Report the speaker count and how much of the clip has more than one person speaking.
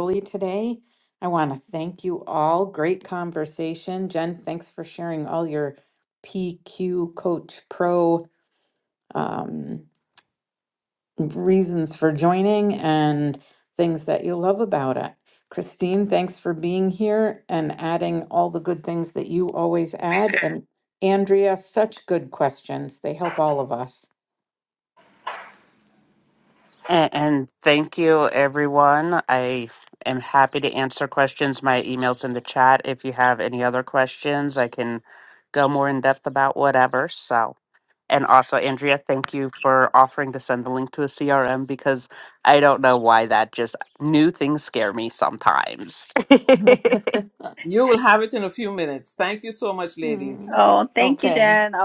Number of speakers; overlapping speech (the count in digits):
4, about 2%